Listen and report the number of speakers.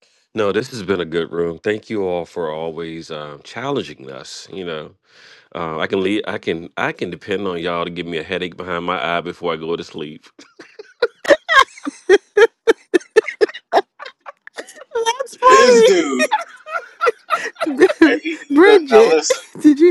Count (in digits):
3